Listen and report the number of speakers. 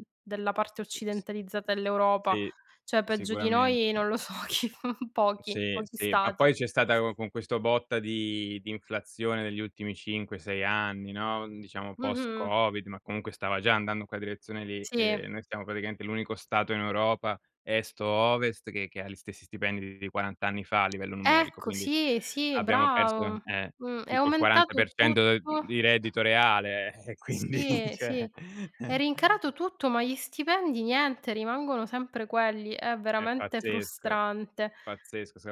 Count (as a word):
two